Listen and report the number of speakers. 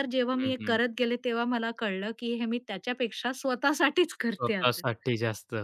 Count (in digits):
2